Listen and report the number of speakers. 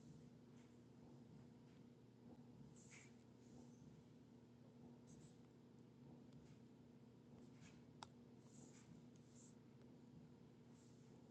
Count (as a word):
zero